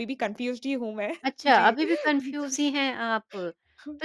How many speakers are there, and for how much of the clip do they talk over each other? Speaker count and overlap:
two, about 13%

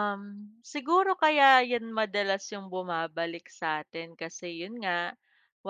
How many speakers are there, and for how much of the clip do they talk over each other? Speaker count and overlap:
one, no overlap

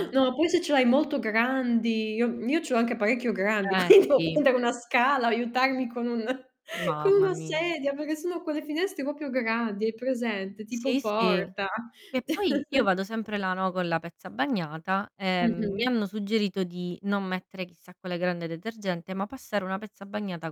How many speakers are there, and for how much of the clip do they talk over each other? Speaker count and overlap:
two, about 12%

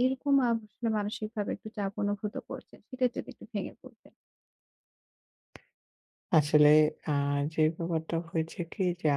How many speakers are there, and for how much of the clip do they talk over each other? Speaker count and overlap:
two, no overlap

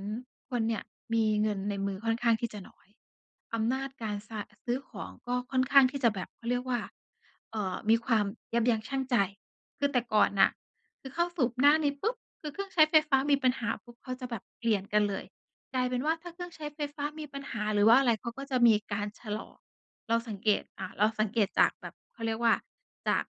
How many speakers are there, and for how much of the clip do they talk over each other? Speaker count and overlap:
one, no overlap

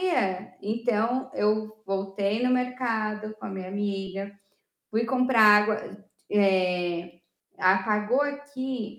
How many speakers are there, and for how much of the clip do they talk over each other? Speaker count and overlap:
one, no overlap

